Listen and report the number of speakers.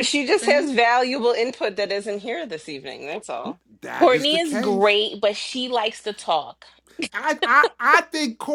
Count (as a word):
three